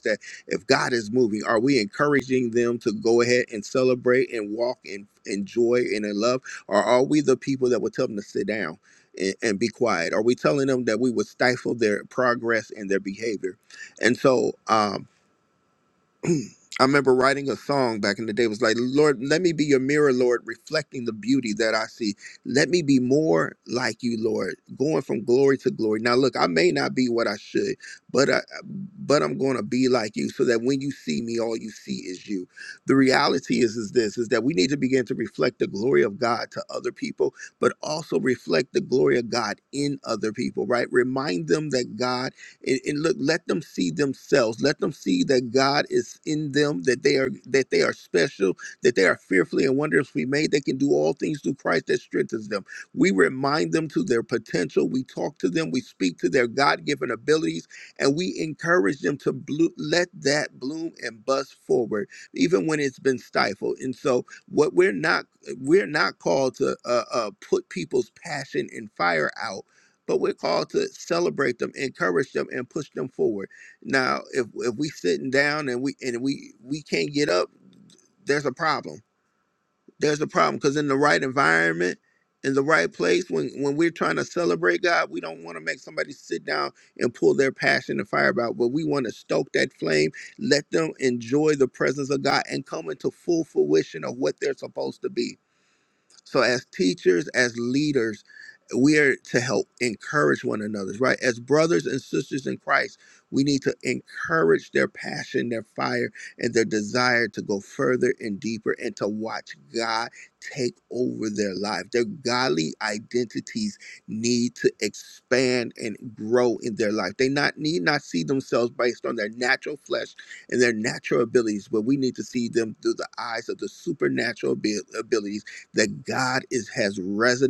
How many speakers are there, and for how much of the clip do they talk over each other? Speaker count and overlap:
one, no overlap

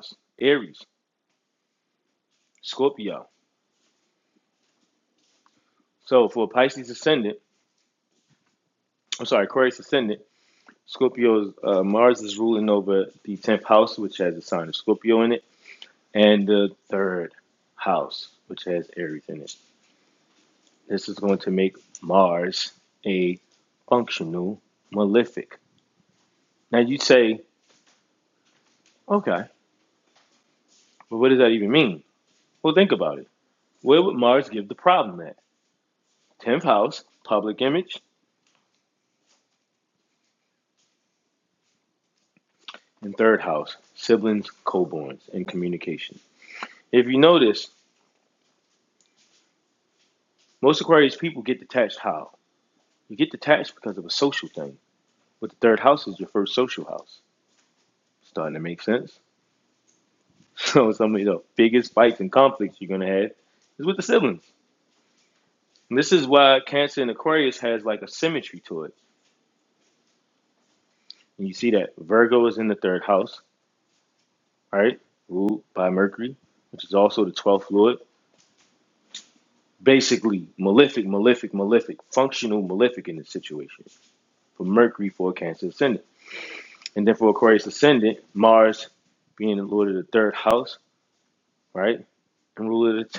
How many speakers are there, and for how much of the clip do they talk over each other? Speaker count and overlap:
one, no overlap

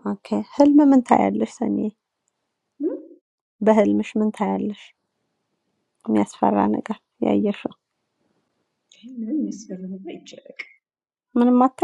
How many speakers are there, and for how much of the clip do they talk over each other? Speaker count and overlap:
two, no overlap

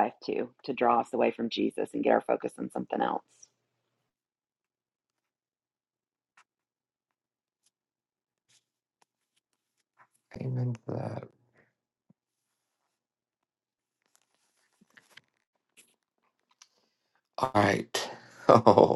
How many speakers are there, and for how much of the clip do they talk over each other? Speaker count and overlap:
two, no overlap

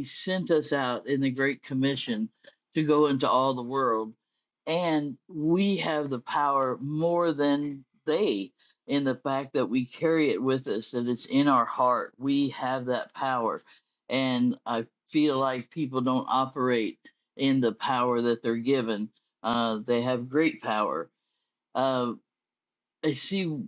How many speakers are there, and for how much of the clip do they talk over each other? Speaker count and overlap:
one, no overlap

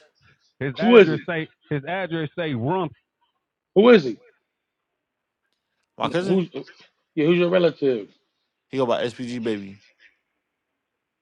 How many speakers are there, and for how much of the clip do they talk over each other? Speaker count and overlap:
three, about 6%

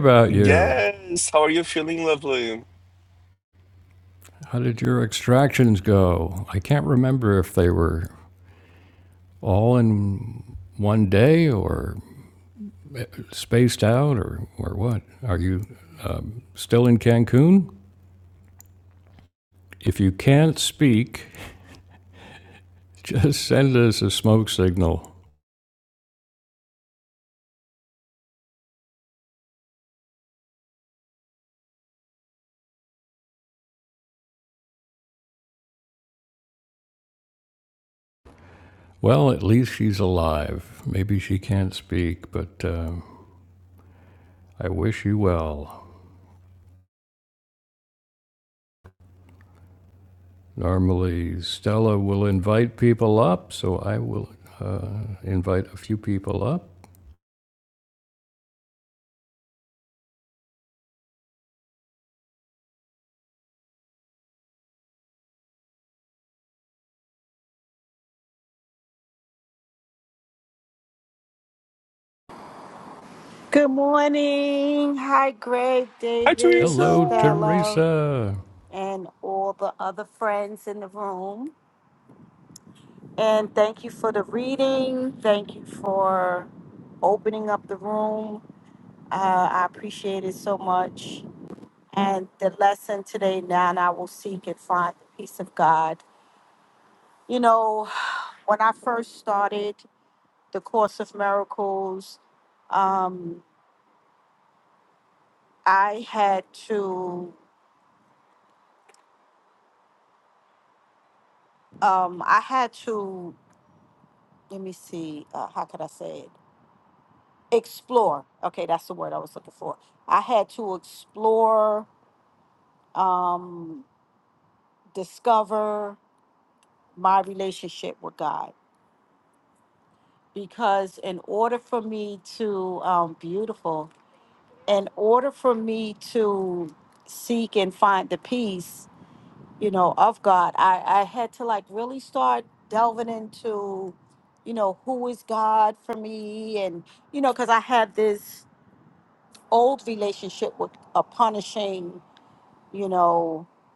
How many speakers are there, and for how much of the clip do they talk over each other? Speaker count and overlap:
three, about 1%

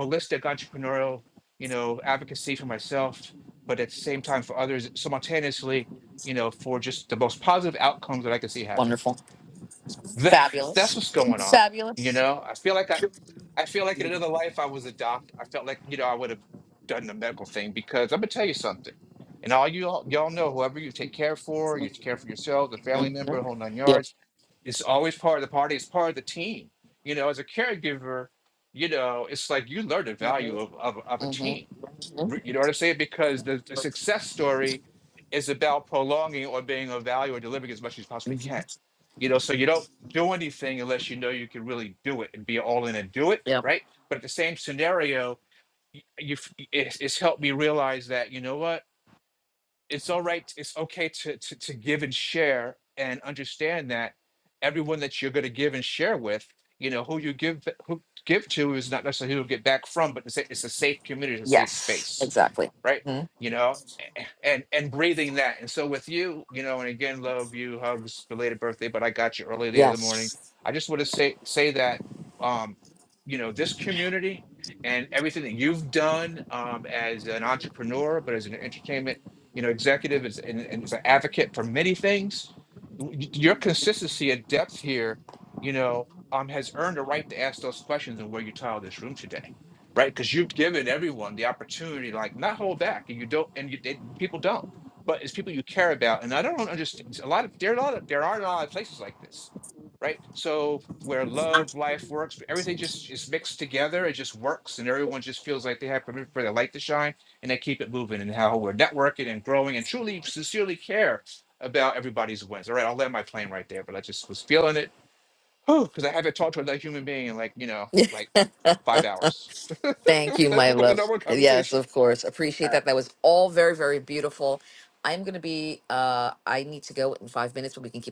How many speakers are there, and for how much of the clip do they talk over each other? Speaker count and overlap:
two, about 4%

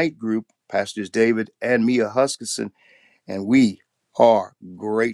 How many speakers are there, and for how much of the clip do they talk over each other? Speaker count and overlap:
one, no overlap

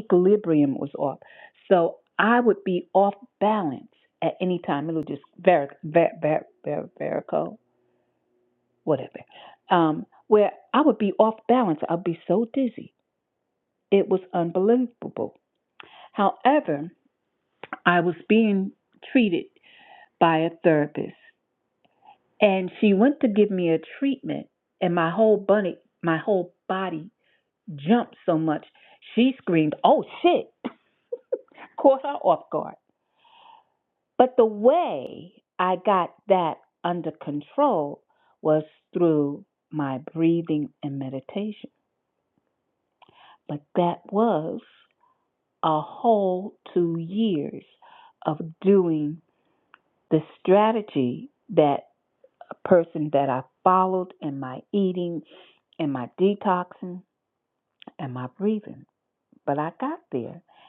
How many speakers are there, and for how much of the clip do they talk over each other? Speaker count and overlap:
one, no overlap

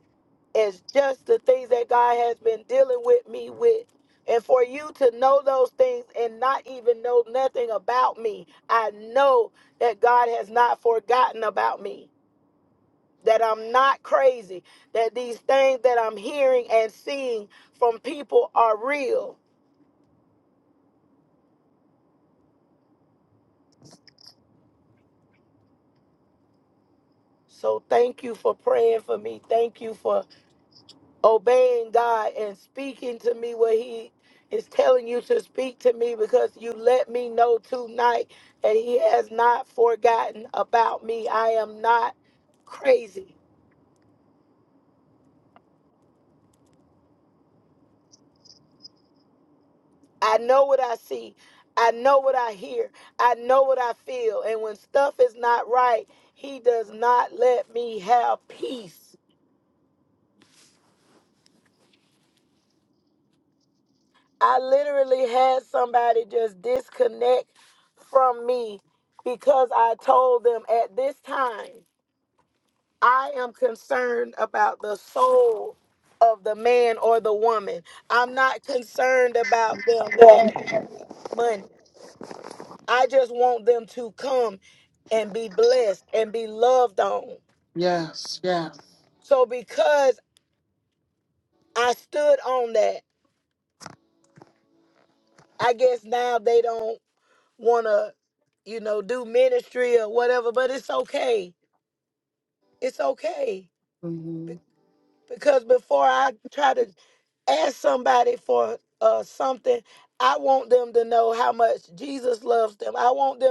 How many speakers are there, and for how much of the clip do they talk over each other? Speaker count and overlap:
two, under 1%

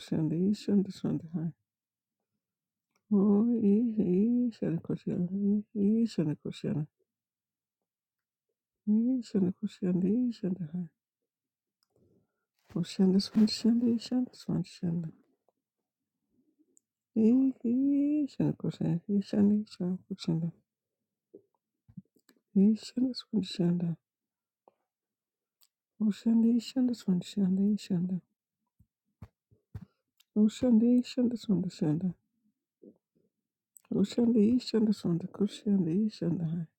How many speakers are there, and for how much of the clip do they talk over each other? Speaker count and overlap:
one, no overlap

